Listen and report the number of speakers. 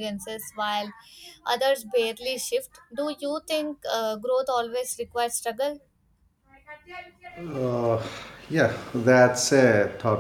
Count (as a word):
two